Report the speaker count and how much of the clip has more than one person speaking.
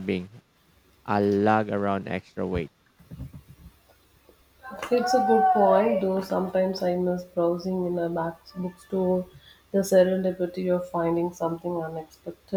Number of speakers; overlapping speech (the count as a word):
two, no overlap